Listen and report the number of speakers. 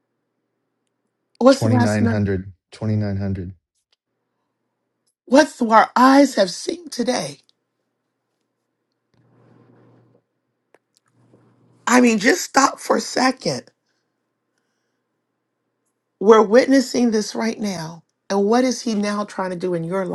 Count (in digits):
2